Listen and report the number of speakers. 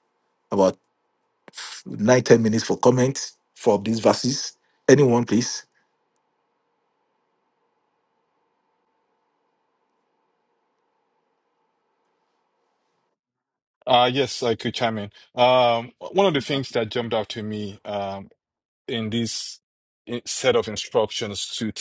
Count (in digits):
2